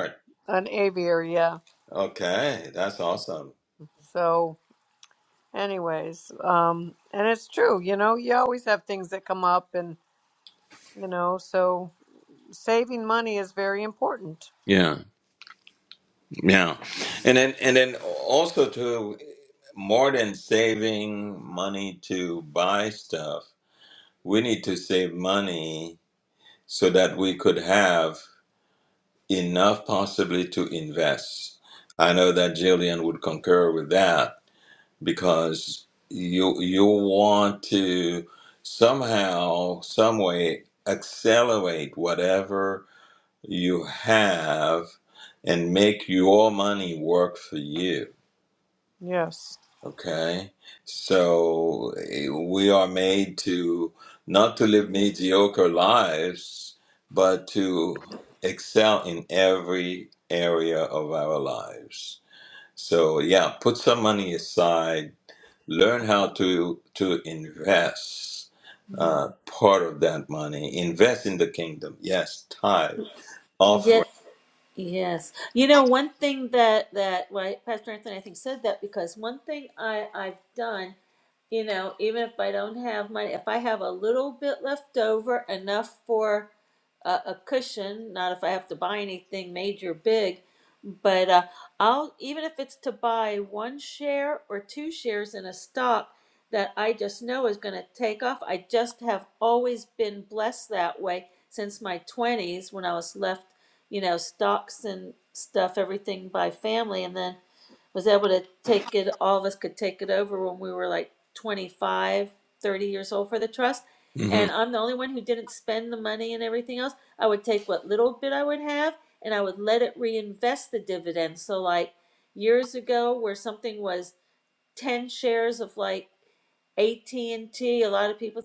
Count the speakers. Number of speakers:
3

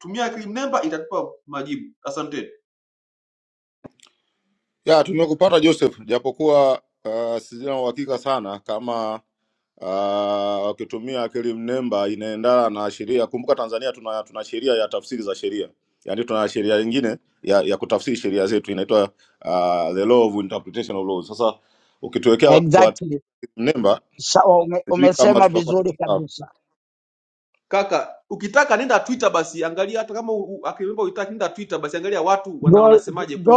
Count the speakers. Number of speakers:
3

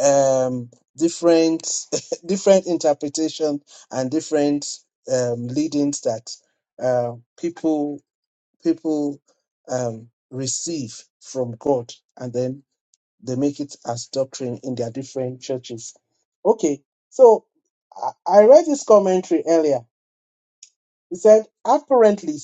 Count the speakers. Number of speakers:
1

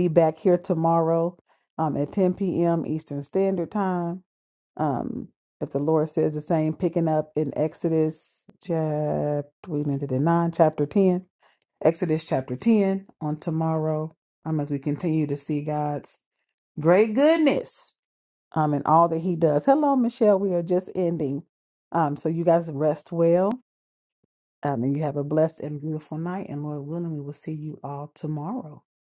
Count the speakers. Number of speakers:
1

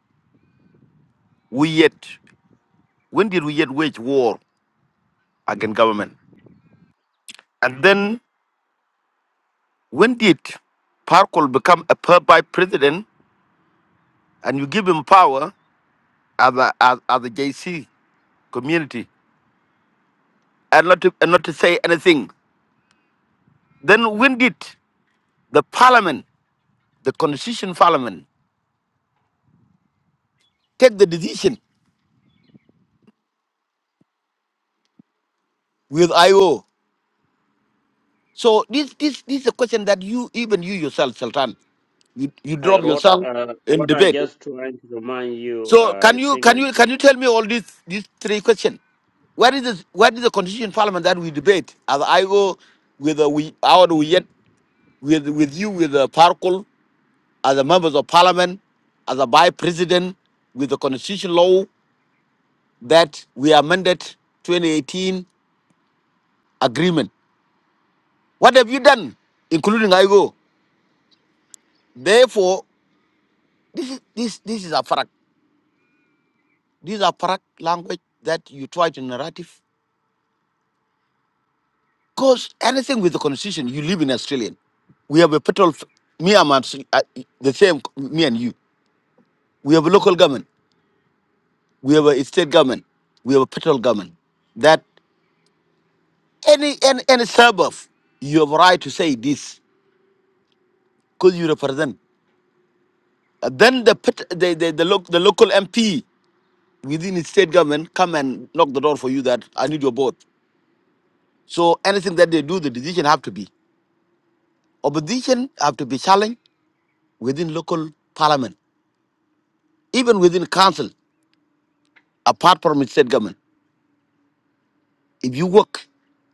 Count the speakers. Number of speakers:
2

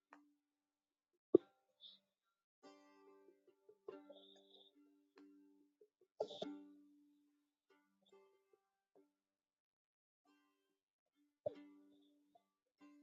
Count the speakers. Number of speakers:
0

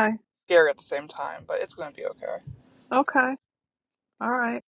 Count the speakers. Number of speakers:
2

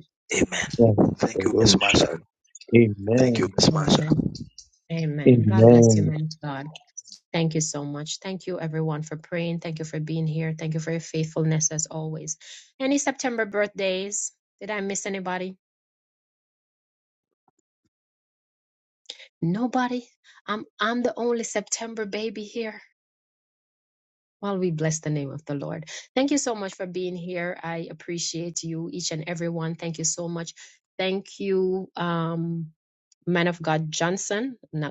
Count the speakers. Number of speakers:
3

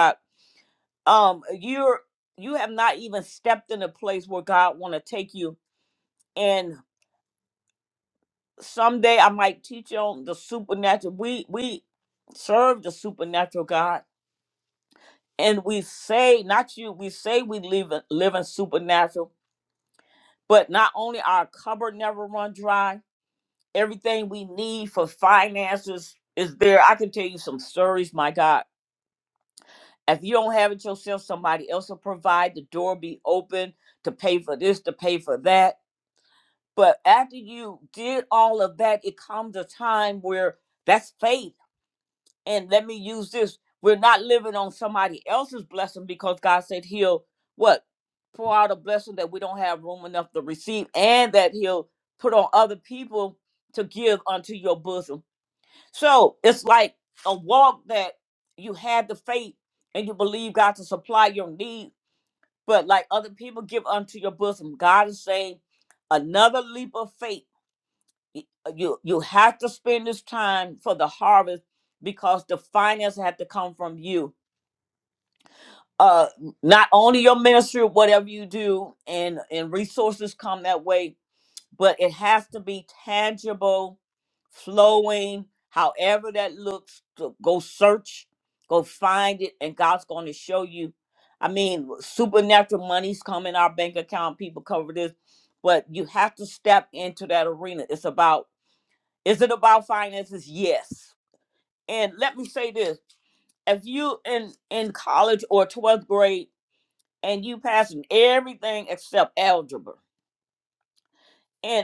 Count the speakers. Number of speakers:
1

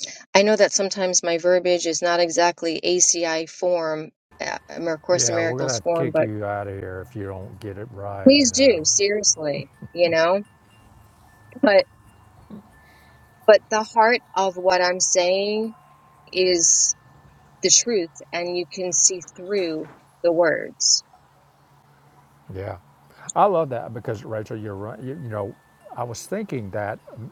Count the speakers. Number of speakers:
2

